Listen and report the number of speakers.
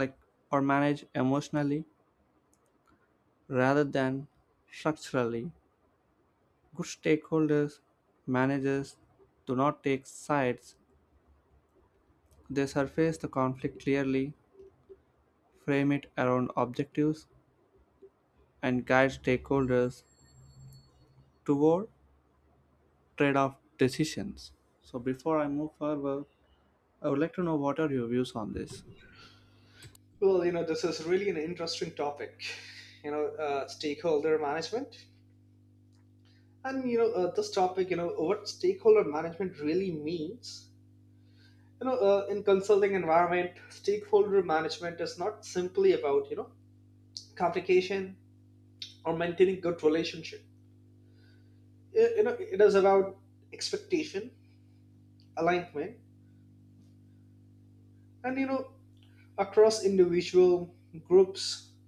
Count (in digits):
2